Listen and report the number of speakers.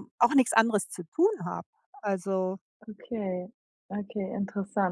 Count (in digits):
2